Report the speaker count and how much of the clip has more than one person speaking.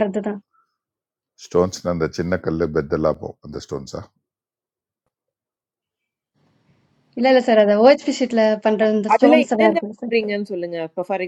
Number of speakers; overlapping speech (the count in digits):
3, about 9%